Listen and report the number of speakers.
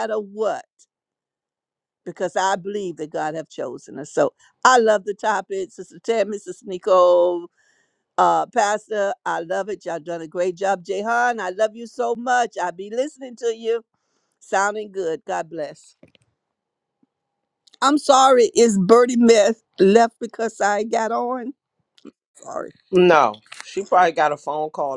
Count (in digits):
2